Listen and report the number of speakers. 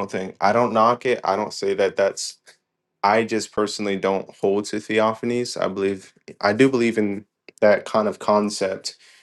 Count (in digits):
1